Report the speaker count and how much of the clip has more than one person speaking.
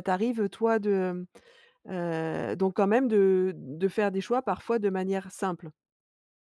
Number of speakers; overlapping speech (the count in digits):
1, no overlap